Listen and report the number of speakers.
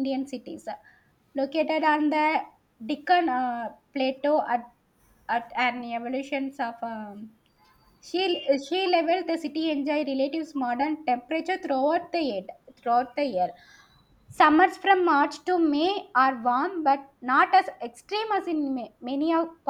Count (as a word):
one